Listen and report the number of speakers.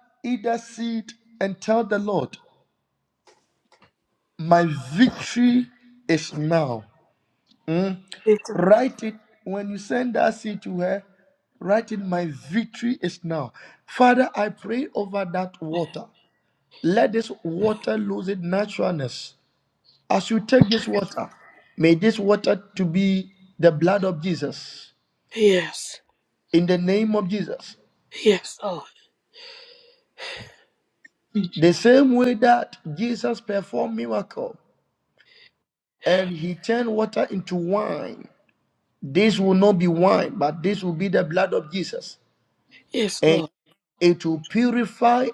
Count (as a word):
two